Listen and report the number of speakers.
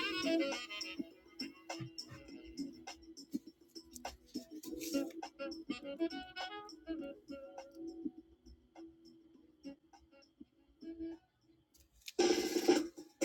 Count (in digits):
0